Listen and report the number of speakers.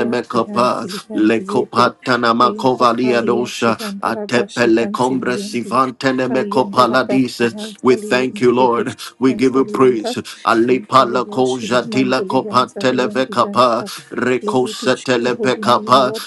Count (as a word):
two